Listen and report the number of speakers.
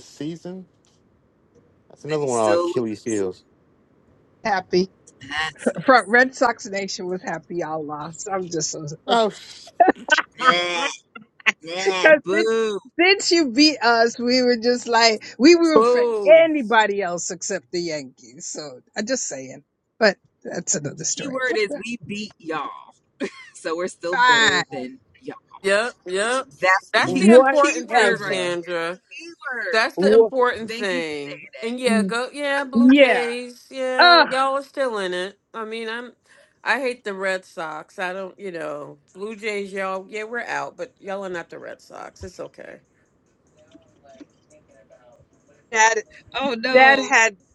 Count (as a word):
four